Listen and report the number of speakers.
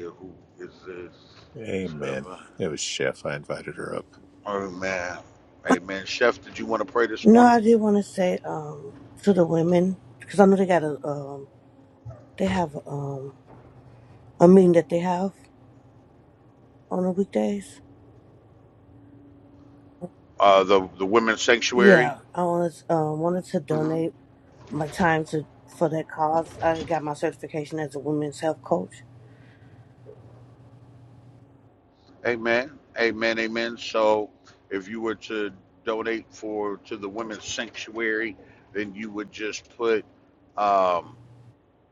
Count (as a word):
three